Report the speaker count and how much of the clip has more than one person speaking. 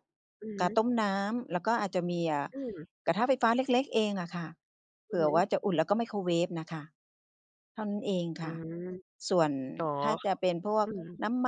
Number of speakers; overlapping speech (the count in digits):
2, about 4%